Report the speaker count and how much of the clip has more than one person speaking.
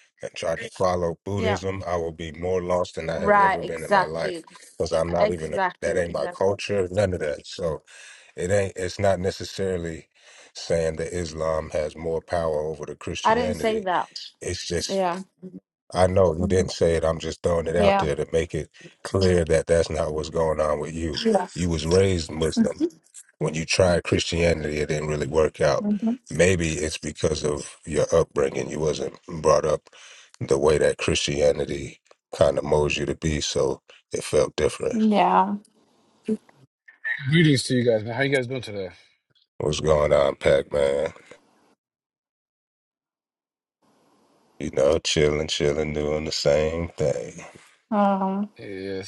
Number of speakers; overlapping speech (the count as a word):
three, about 9%